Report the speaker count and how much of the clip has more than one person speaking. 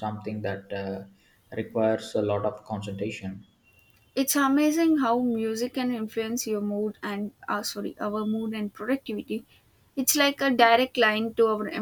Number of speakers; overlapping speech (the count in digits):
2, no overlap